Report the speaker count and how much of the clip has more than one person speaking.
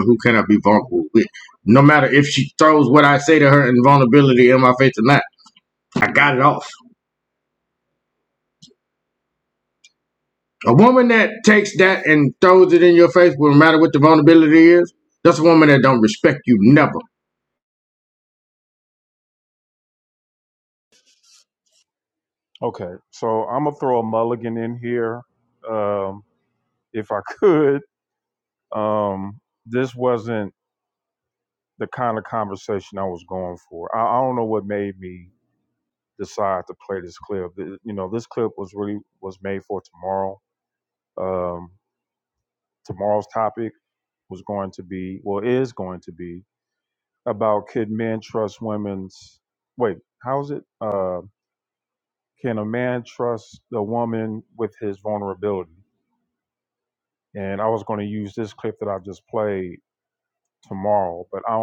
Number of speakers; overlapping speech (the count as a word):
two, no overlap